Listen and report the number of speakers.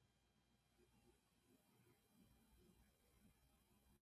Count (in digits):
0